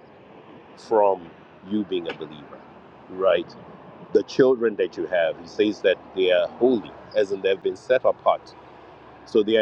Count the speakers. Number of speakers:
1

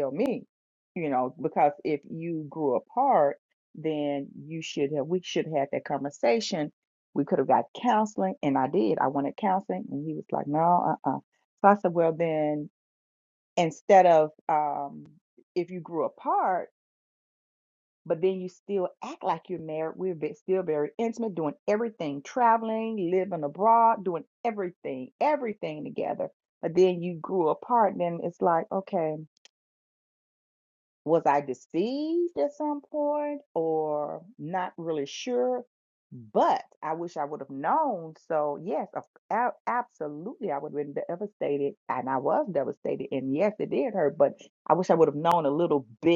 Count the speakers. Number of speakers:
1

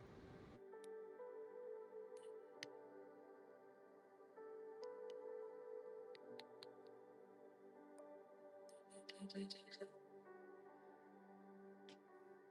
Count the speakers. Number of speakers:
0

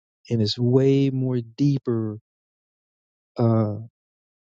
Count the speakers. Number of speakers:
1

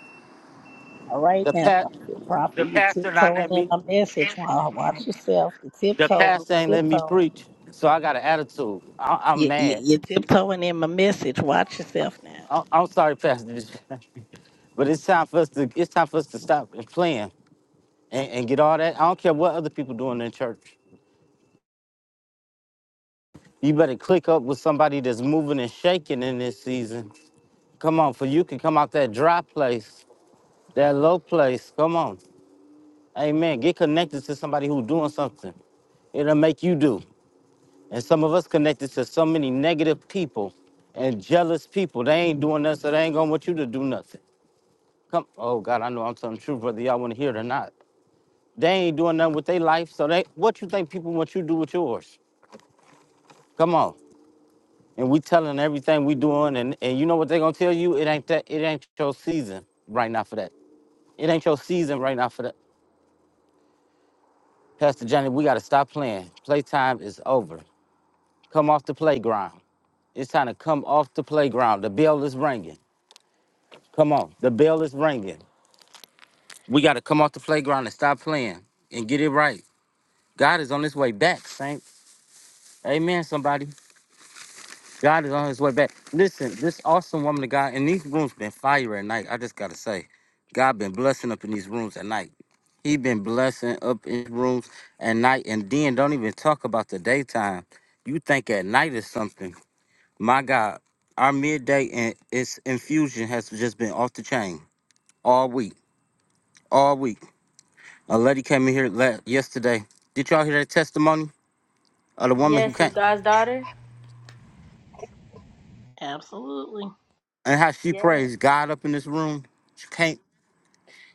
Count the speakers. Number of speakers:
3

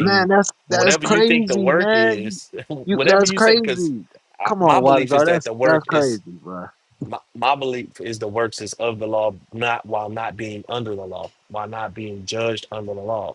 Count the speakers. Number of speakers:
2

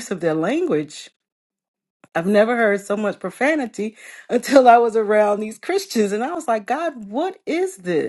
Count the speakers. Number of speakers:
1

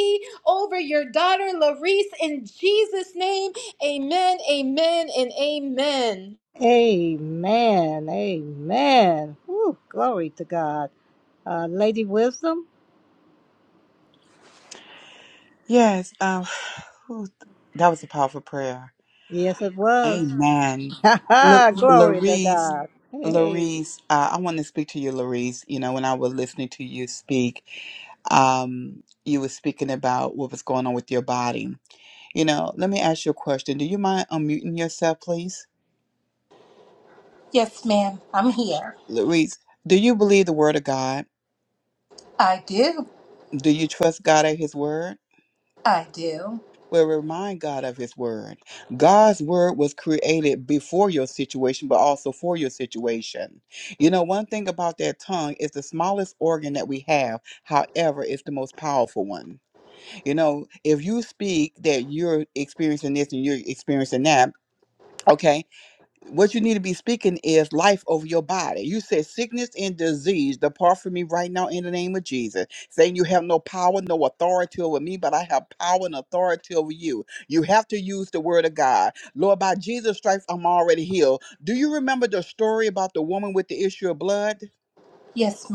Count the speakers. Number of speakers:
4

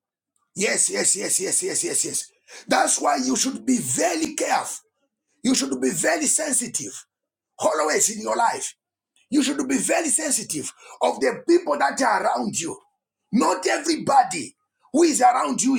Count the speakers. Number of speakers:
1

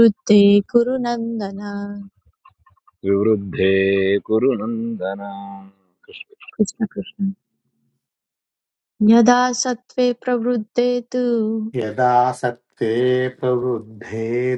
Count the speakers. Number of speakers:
3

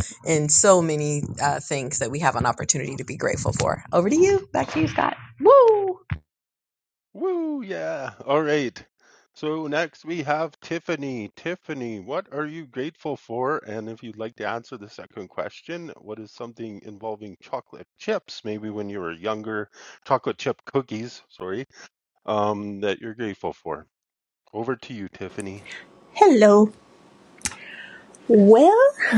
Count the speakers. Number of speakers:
3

